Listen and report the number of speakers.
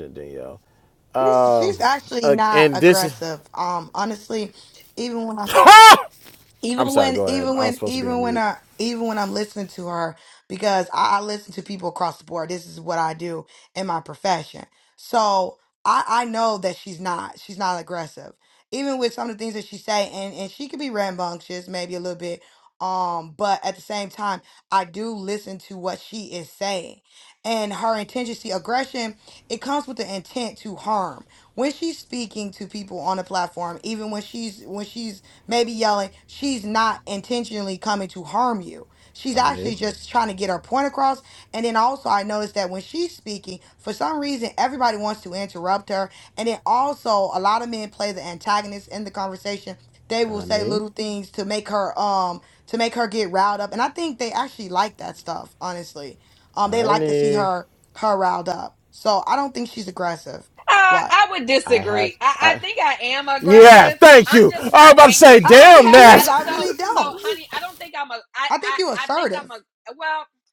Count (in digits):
3